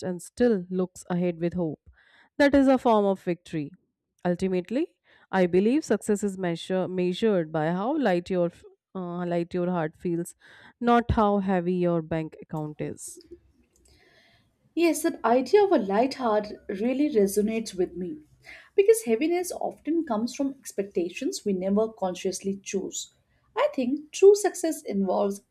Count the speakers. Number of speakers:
2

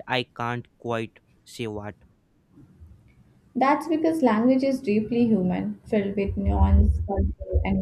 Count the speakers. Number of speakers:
2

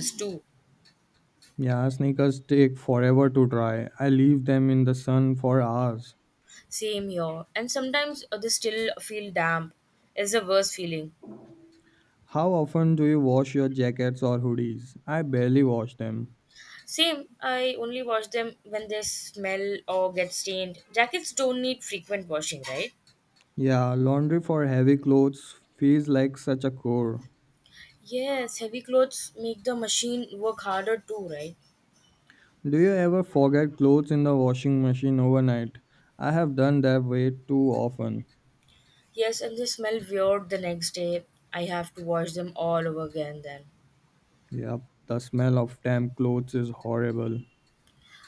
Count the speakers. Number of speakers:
2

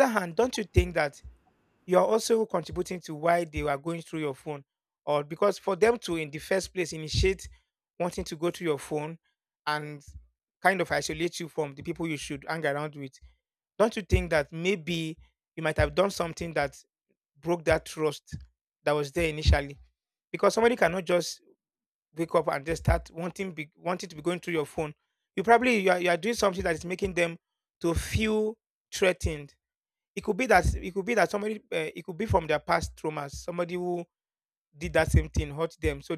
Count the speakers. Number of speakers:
1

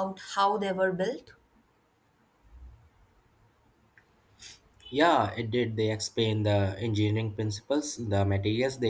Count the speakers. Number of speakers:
2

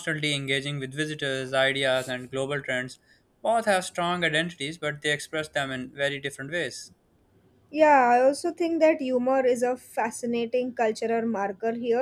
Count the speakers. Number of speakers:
2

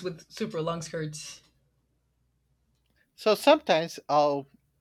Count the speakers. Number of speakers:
2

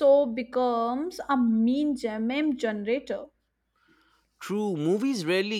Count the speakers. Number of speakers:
2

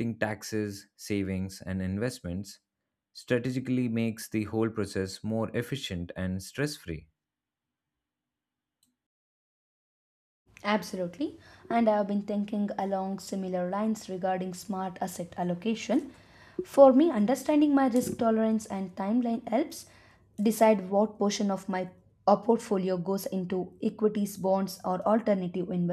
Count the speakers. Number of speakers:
2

